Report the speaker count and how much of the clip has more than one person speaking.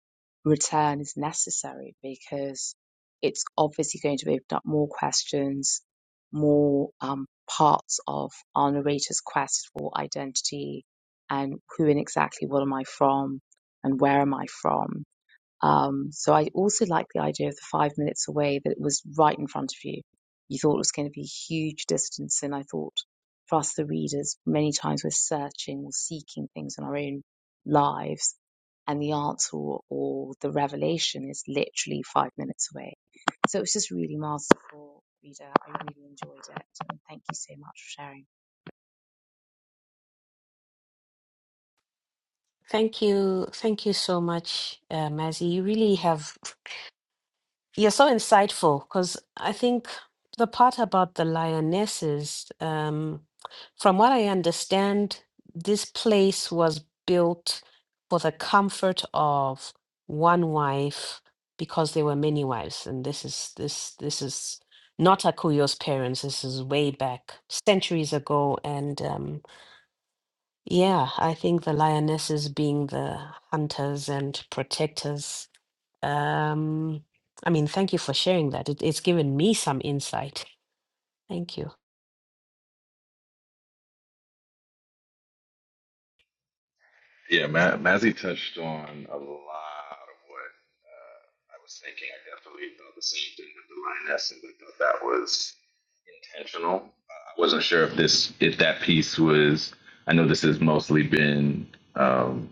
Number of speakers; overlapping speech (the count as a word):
three, no overlap